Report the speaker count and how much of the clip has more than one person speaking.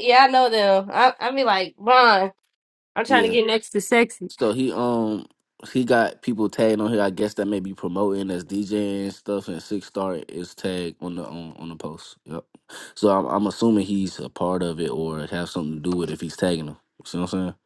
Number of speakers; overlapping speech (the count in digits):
2, about 2%